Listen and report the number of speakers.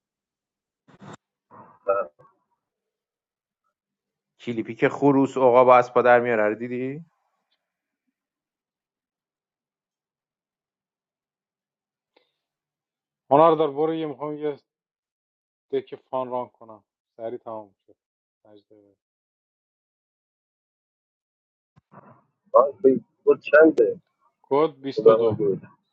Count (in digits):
3